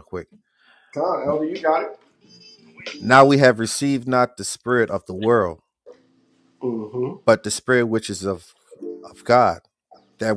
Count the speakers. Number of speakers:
2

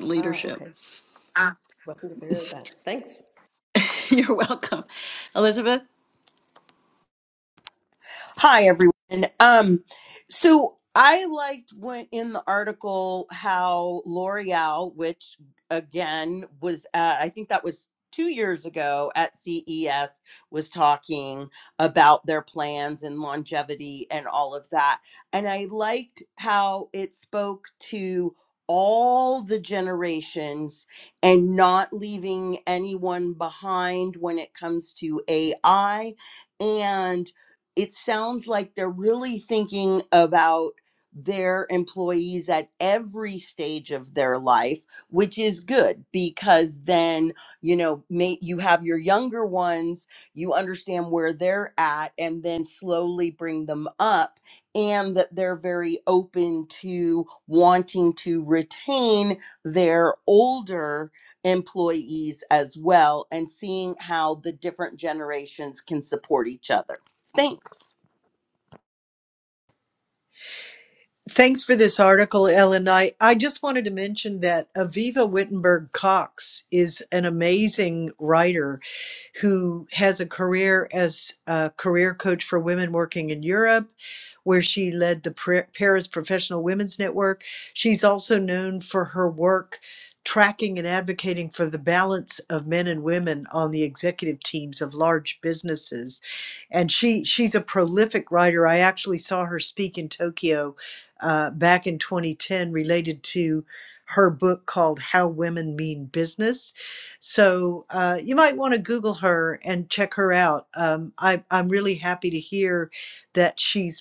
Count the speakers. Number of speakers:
4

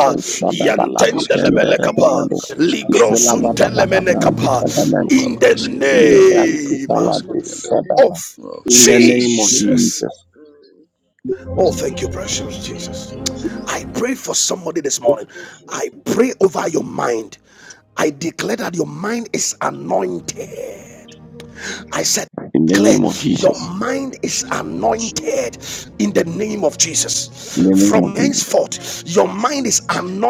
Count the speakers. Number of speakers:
4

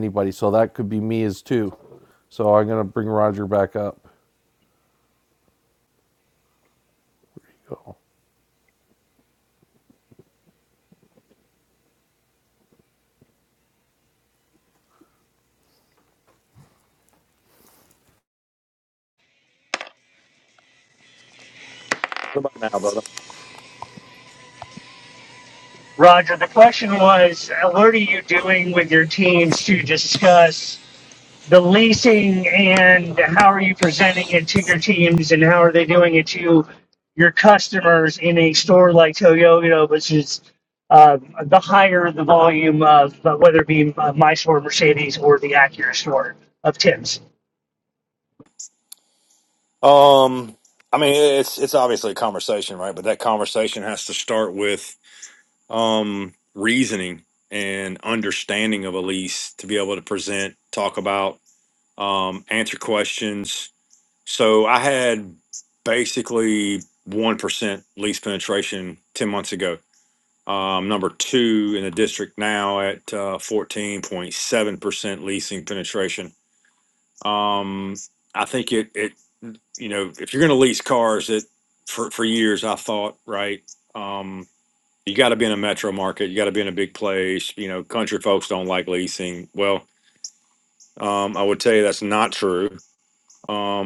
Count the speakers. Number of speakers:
3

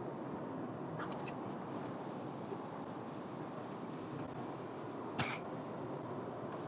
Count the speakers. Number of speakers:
0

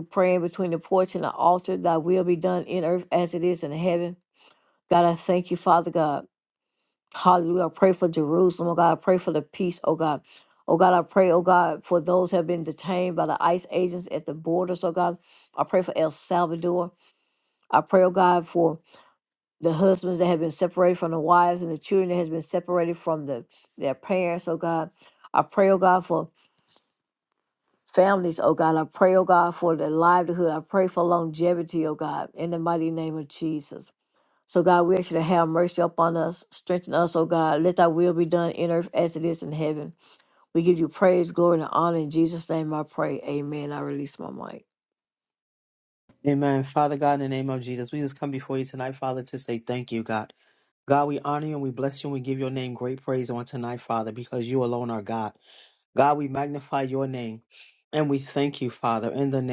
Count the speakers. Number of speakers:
2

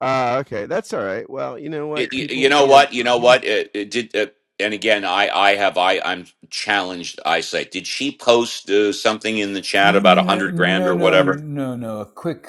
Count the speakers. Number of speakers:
3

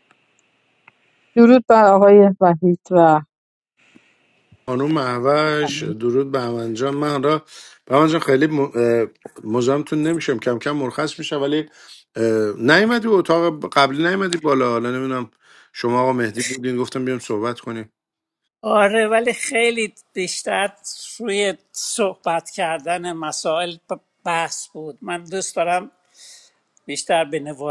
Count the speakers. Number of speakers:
3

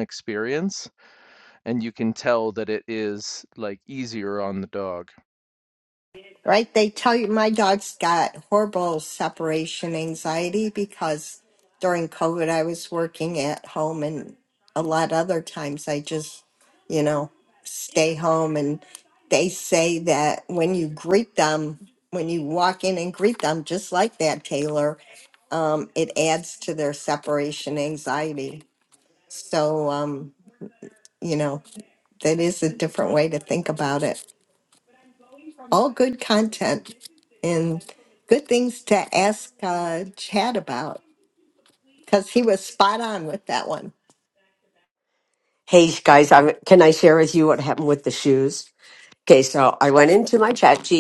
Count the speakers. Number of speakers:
3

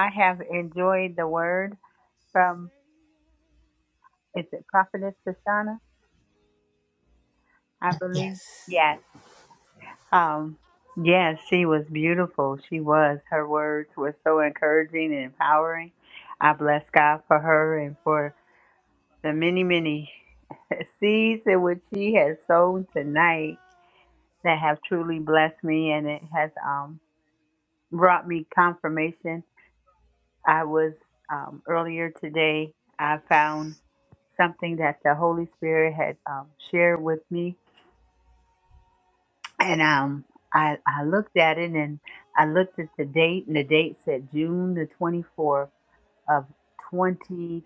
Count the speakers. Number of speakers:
1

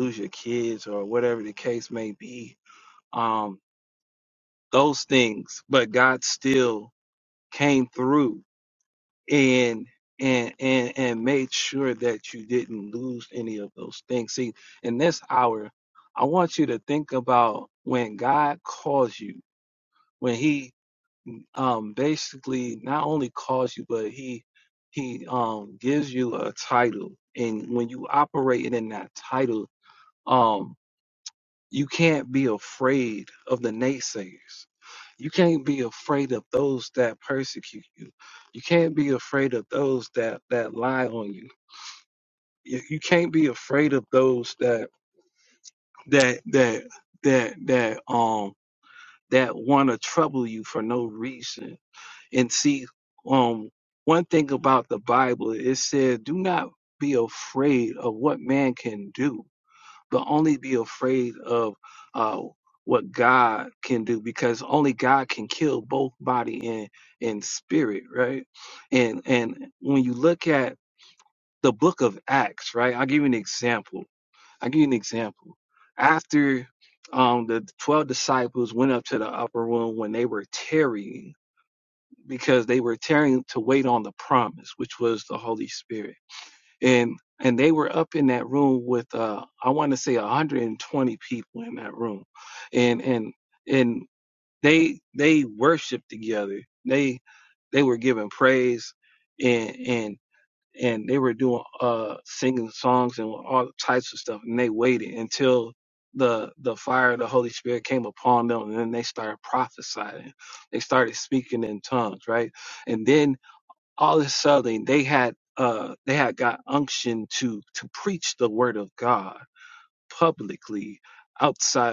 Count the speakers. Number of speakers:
1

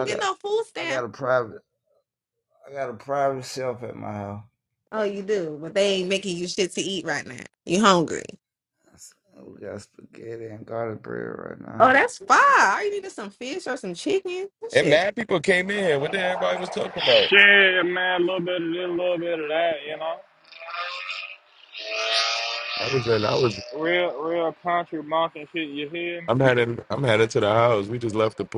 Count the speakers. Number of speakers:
4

